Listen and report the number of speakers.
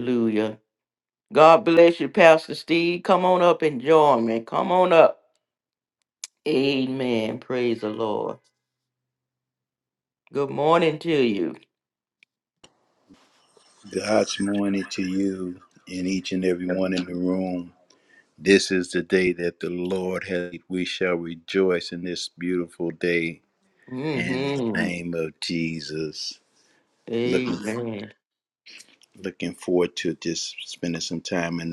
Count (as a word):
two